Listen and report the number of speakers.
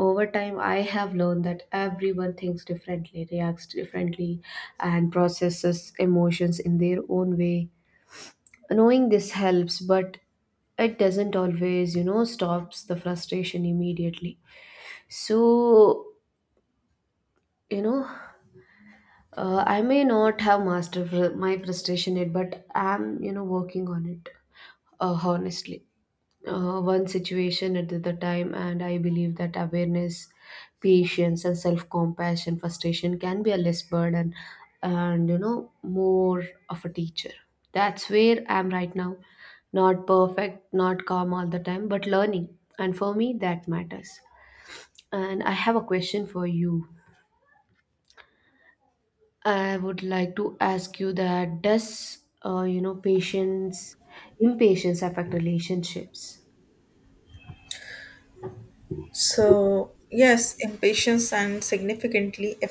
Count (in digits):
2